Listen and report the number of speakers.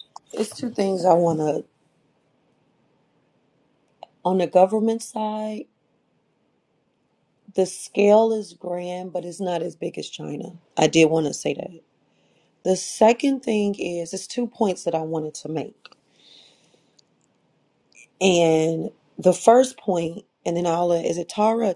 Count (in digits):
1